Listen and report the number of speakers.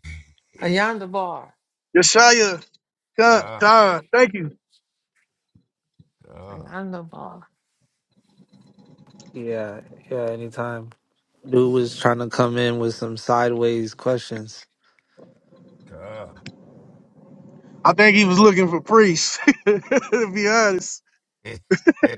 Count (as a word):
four